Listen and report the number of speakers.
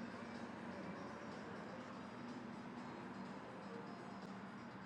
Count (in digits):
0